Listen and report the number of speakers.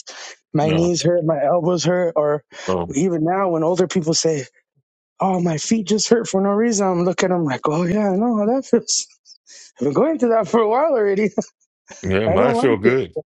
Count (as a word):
two